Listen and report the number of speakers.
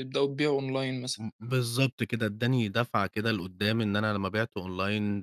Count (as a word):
two